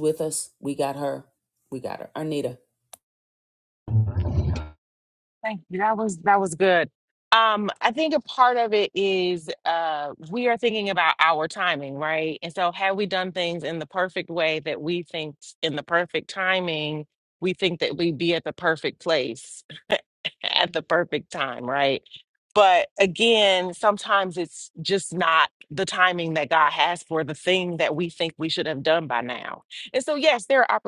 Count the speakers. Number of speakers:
two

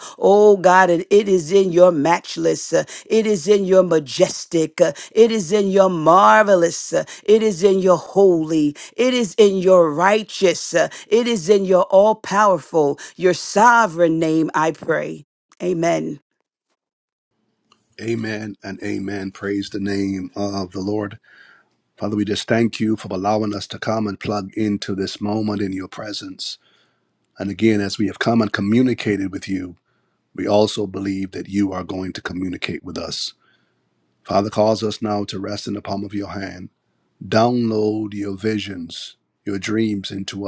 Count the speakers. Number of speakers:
two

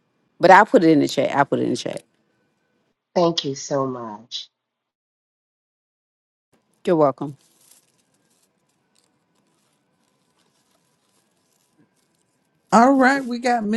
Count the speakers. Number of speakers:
three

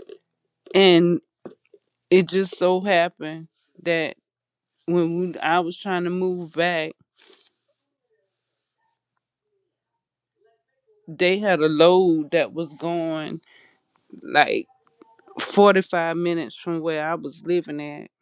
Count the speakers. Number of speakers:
one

